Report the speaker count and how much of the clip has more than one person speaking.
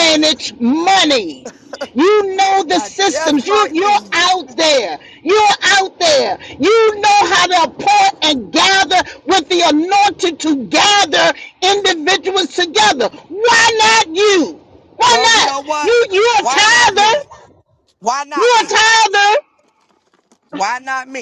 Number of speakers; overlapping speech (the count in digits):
2, about 16%